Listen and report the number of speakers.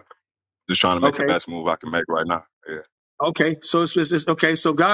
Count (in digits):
2